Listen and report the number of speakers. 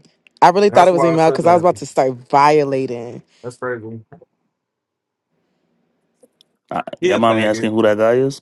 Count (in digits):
3